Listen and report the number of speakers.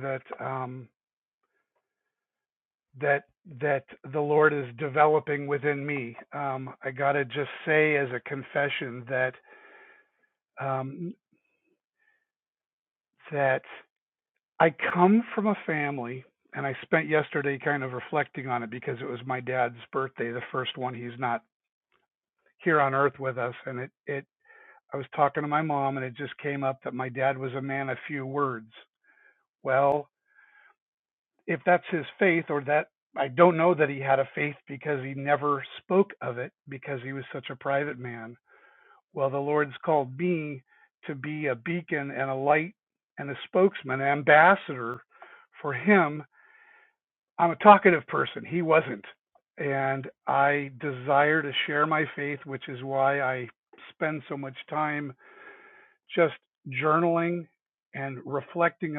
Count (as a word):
one